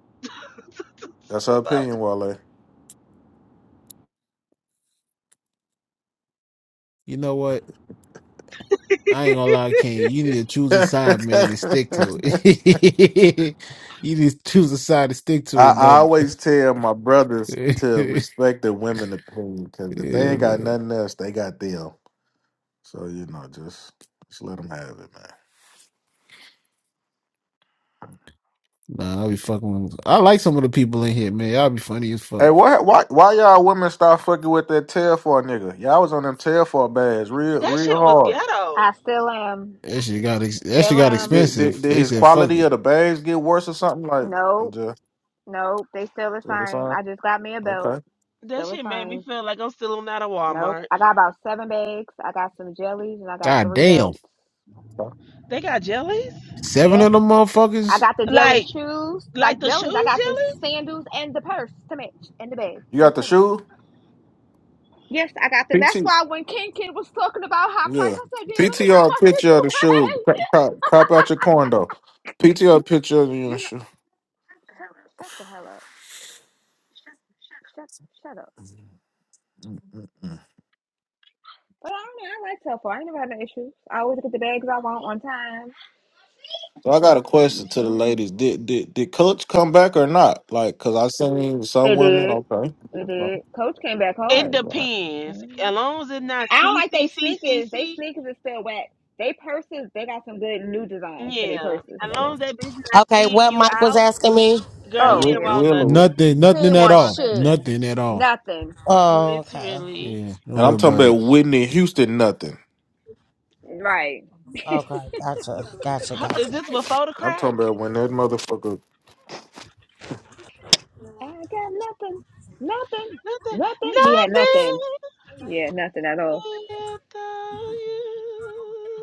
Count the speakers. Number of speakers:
five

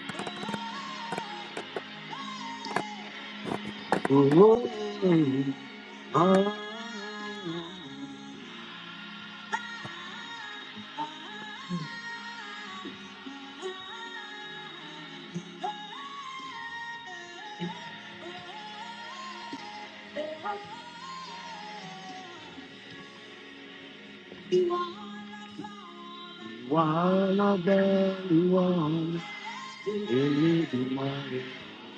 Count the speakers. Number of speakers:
one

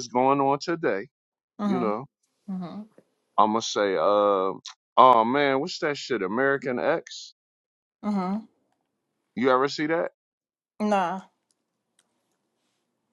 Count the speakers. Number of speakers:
two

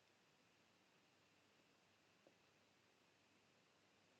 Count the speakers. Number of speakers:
zero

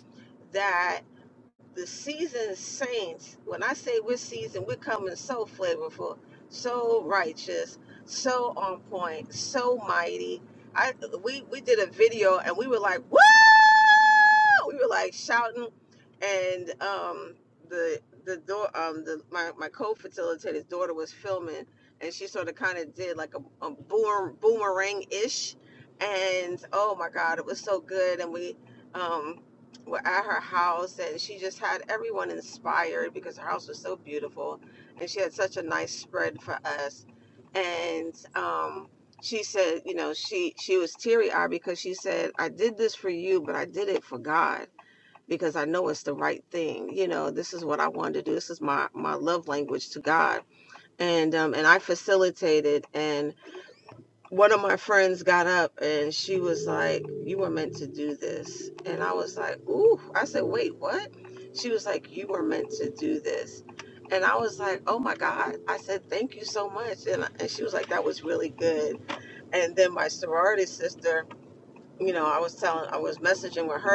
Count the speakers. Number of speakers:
one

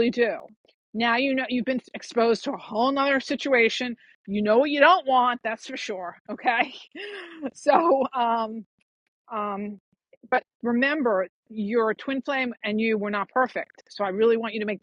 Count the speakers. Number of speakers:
one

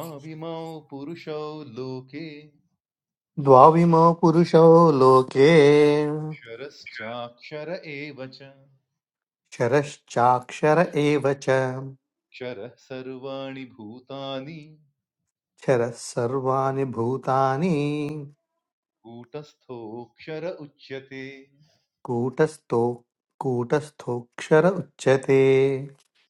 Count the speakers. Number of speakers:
two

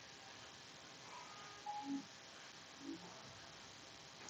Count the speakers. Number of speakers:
zero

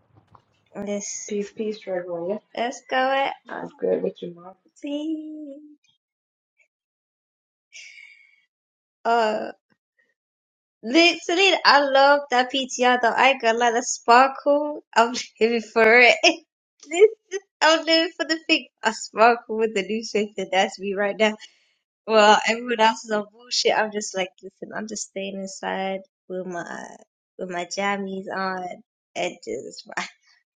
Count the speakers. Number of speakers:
two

